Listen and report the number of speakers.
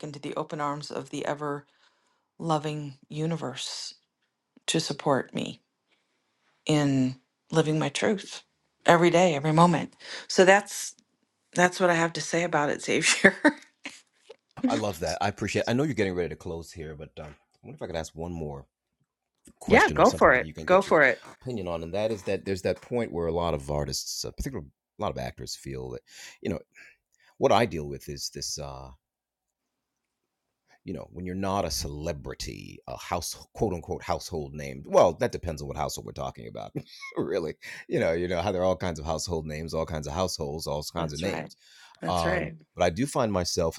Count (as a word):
two